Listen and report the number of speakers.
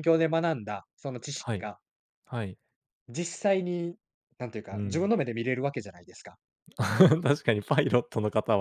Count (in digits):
2